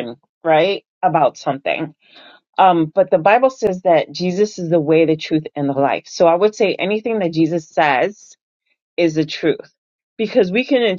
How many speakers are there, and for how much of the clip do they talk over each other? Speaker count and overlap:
1, no overlap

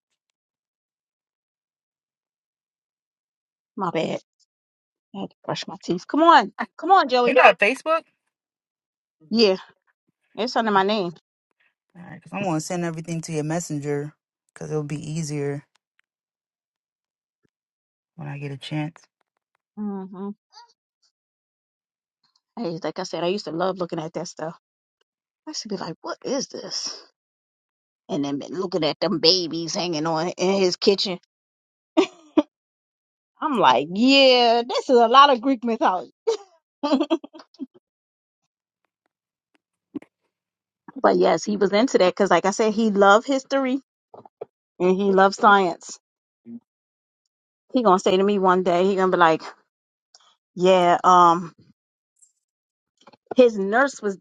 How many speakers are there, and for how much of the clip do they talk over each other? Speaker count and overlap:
2, under 1%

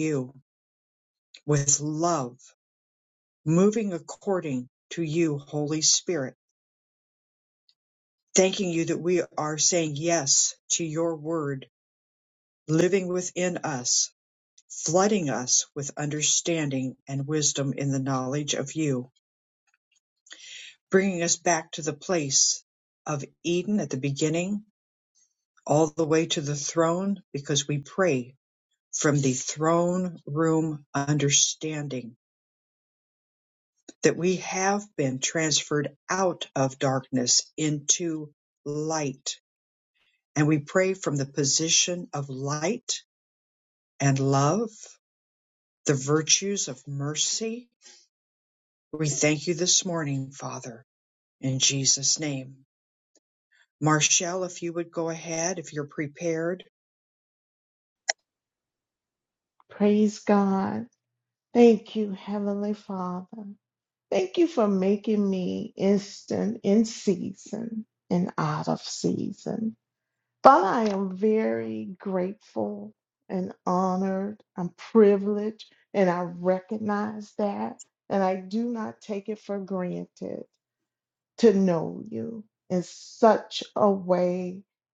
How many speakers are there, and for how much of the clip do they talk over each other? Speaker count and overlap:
2, no overlap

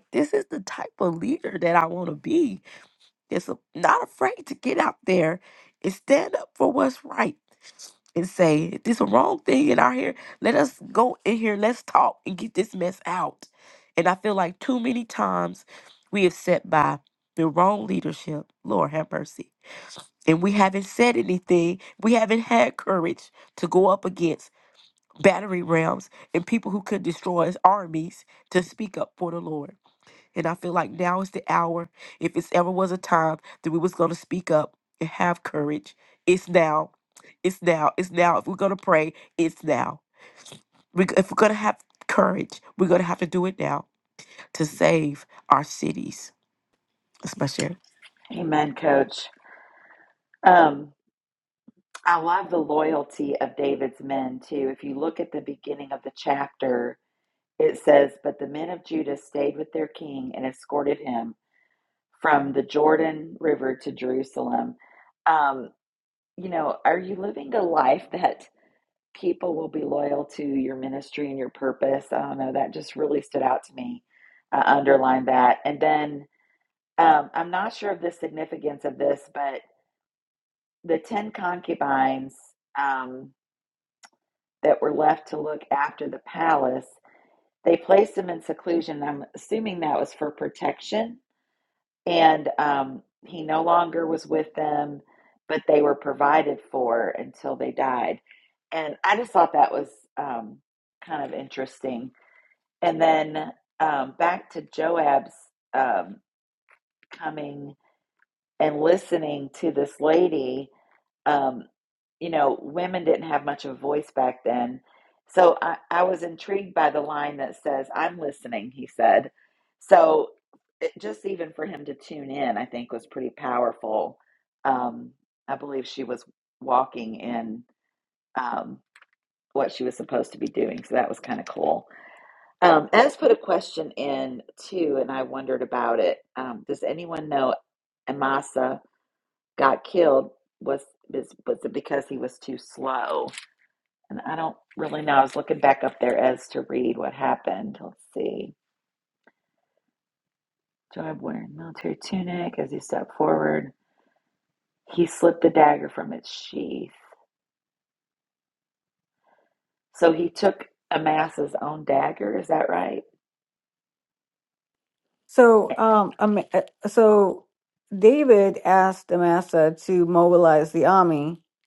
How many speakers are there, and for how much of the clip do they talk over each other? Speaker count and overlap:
3, no overlap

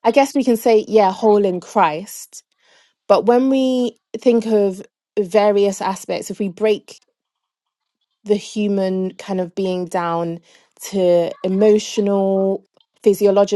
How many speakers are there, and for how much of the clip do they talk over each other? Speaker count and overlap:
1, no overlap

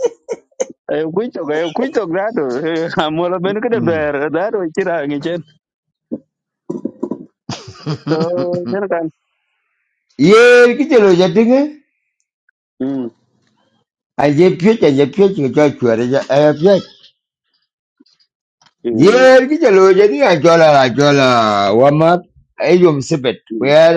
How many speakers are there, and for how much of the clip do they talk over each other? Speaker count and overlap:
2, about 2%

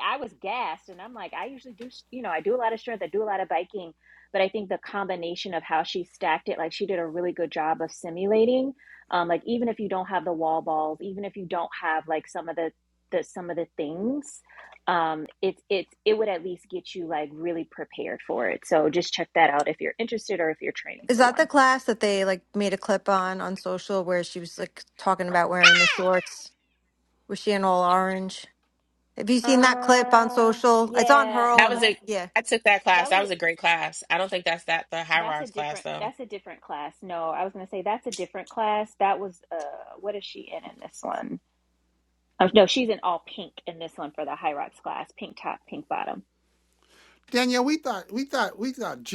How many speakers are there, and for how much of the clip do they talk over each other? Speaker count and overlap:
4, about 8%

